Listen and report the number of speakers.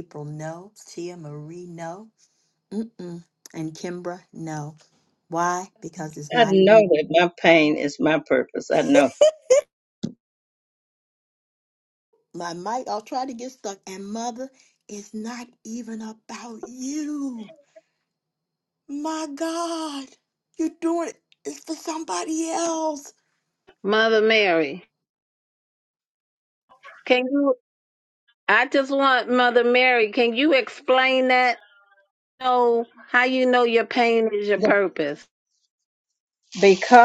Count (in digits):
3